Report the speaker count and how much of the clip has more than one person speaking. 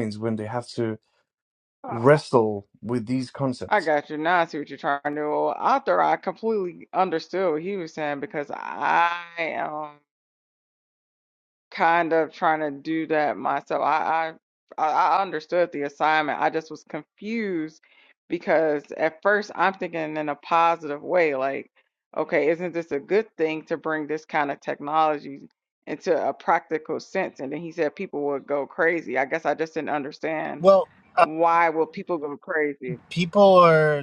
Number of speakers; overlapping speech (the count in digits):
3, about 1%